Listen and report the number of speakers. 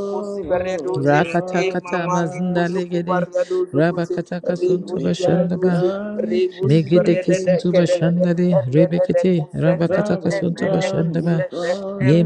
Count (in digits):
3